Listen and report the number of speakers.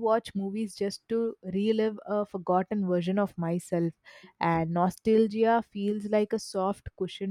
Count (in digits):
1